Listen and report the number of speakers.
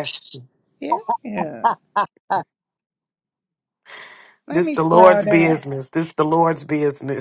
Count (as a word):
two